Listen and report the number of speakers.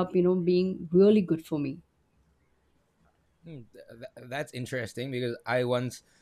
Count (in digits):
2